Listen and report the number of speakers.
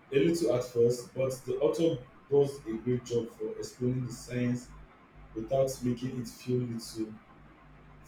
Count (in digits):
1